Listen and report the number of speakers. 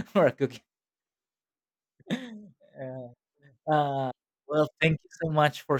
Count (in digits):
1